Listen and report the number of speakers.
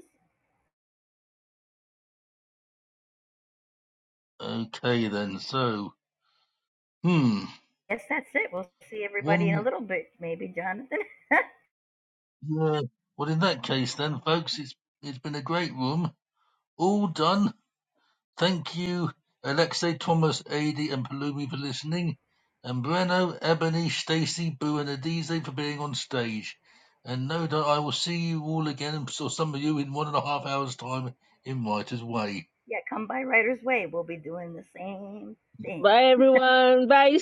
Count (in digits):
3